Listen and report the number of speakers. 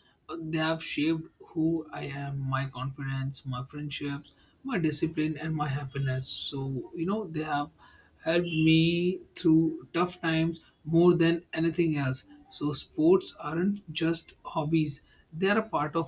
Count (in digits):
1